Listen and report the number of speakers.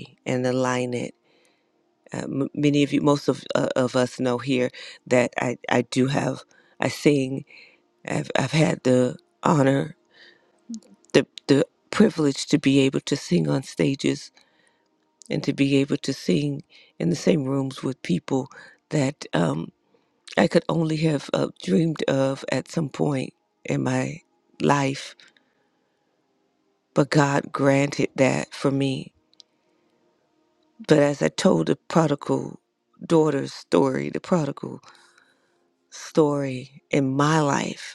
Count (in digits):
1